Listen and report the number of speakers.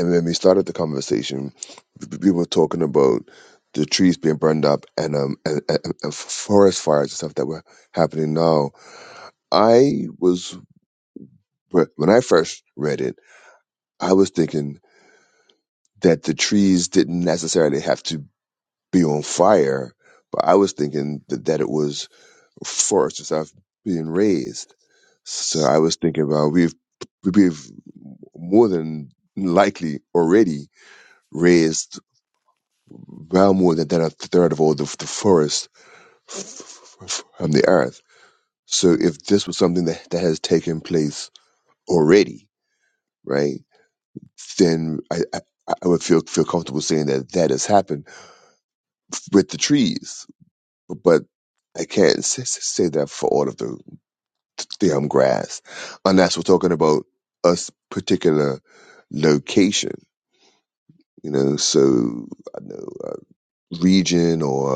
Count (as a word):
one